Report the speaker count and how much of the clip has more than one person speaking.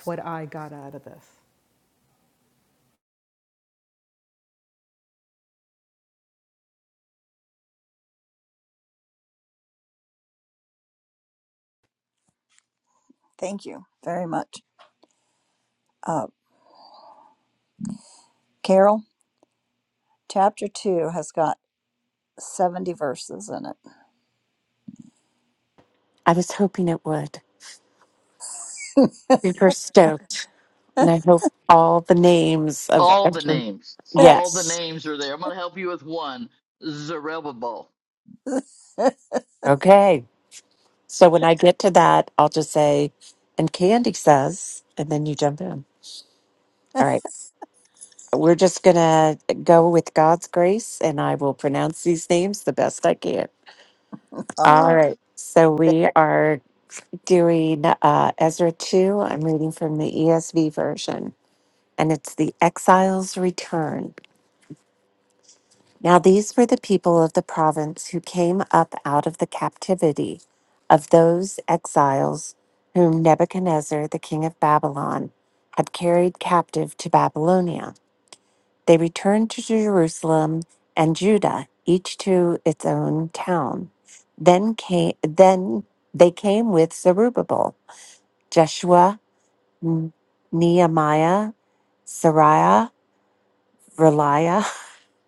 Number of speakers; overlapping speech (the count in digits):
4, about 2%